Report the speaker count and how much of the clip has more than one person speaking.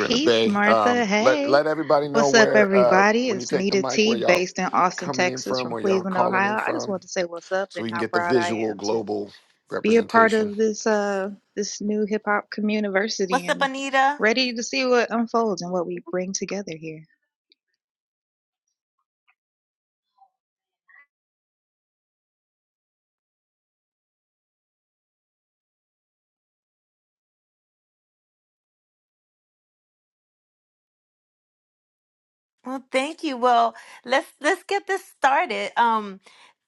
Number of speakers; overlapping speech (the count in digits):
3, about 22%